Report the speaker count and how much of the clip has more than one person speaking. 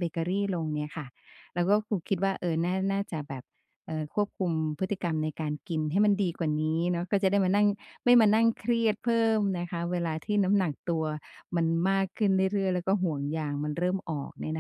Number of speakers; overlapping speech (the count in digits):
1, no overlap